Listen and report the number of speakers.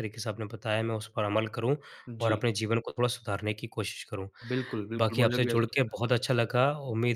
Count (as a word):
two